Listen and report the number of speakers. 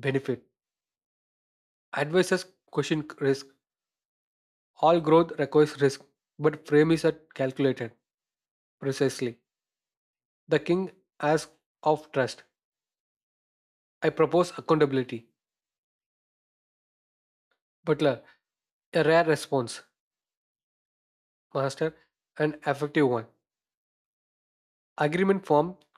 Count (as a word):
one